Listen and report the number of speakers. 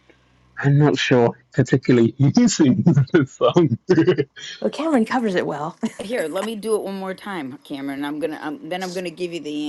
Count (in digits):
3